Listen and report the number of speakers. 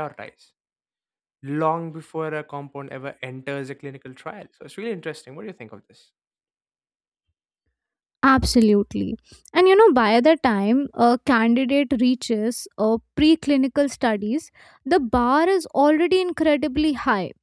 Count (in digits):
2